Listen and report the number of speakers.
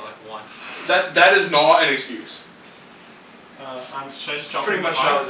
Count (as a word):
three